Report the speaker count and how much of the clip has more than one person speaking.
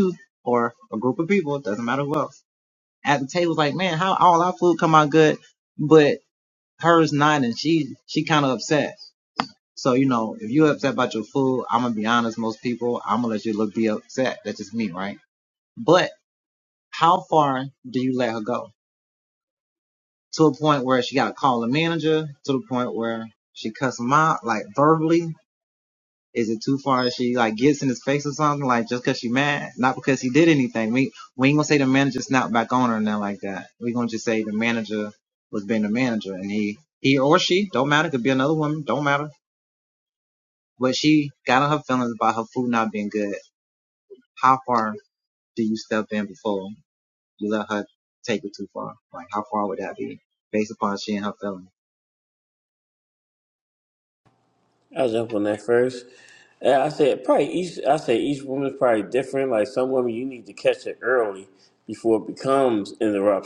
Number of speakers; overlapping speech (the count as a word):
two, no overlap